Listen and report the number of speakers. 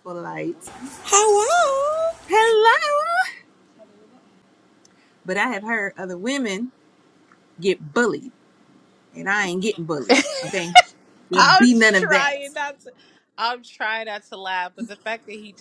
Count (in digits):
3